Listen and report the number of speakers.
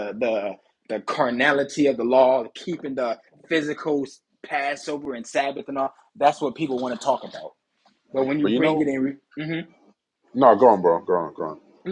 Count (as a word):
two